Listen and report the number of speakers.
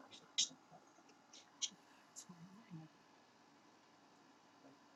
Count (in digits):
0